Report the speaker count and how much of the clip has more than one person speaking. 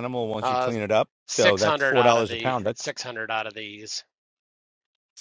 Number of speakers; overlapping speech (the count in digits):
2, about 35%